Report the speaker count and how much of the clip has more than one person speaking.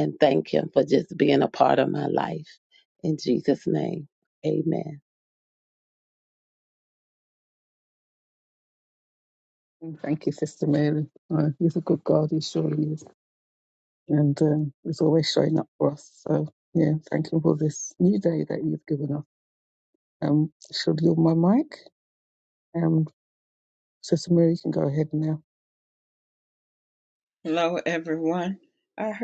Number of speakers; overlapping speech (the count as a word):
three, no overlap